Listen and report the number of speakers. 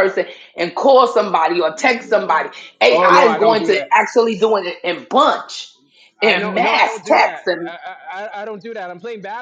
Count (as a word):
two